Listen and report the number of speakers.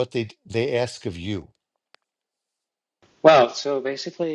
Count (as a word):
two